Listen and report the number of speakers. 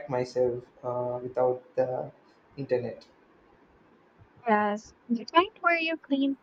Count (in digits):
2